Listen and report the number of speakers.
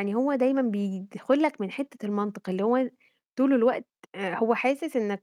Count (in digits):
1